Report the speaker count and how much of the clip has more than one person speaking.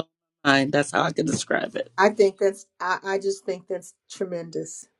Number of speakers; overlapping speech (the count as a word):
two, no overlap